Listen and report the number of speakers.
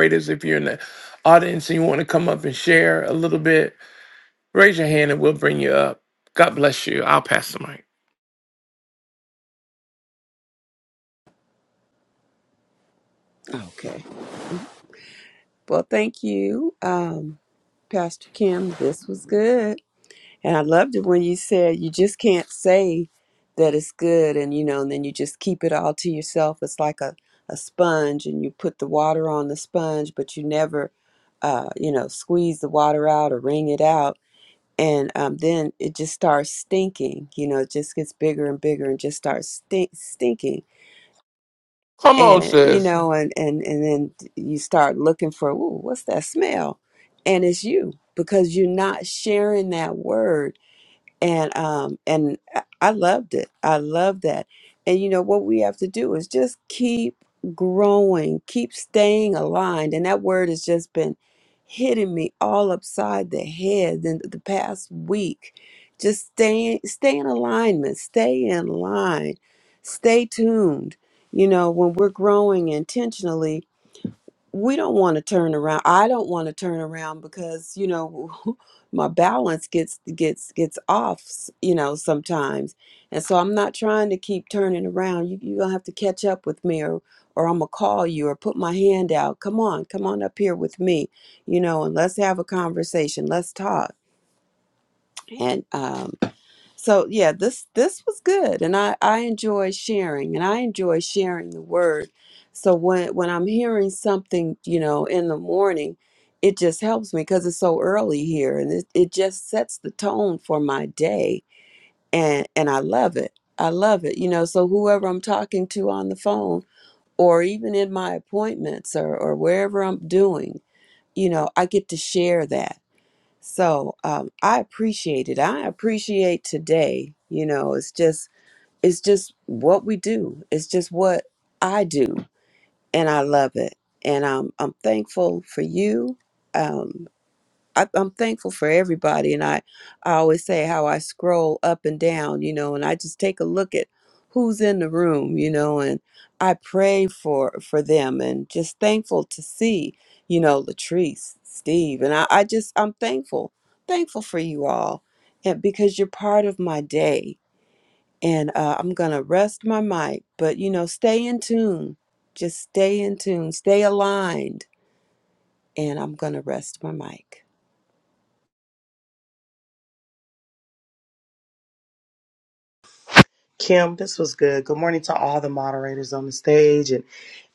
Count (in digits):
3